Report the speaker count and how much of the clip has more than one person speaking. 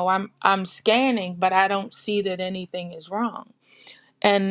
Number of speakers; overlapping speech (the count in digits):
1, no overlap